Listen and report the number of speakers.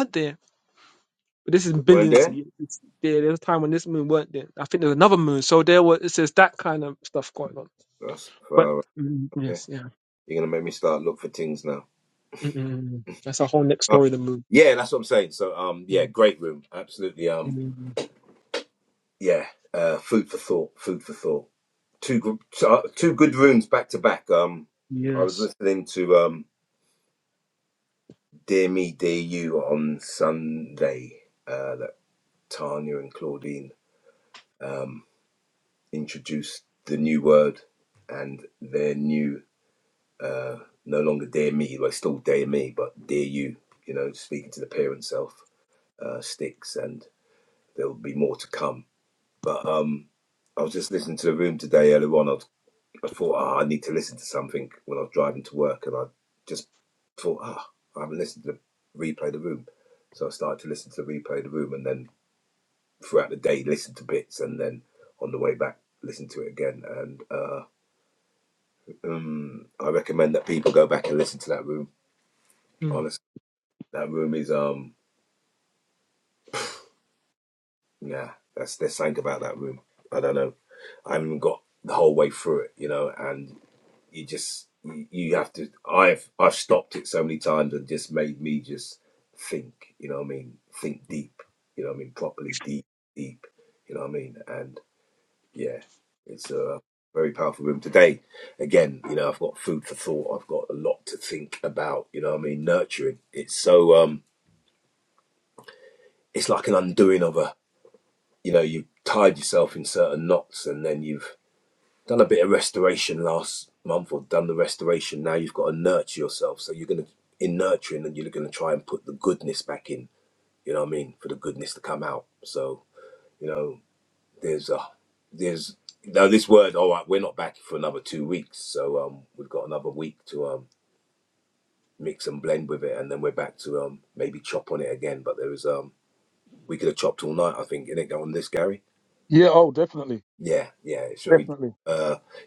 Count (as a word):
three